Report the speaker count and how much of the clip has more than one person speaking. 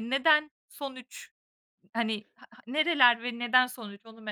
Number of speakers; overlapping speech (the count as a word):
one, no overlap